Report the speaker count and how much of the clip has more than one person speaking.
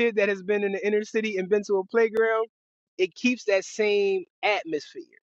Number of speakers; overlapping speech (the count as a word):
one, no overlap